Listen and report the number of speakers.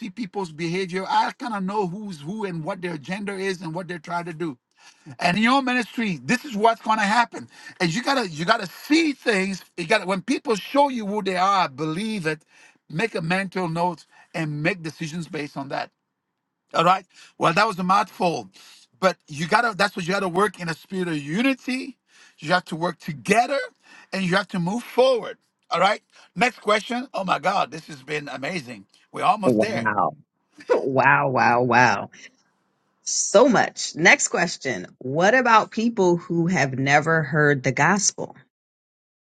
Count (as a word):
two